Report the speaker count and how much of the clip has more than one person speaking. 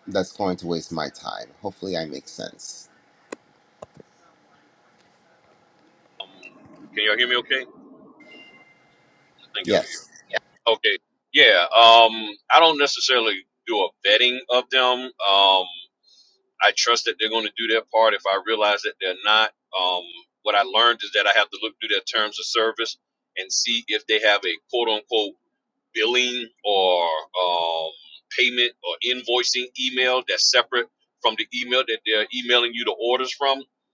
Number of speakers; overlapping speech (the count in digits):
2, about 1%